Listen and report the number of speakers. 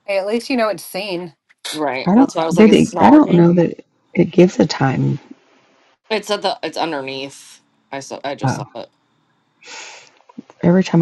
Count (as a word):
three